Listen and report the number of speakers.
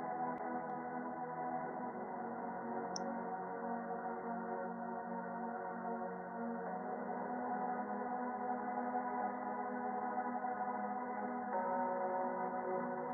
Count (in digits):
0